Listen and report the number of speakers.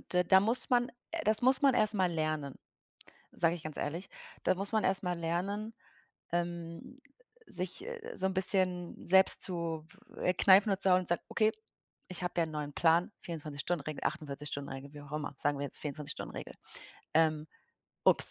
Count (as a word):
one